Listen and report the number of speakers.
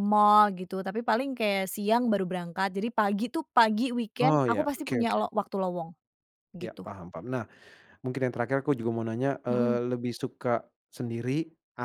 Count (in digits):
2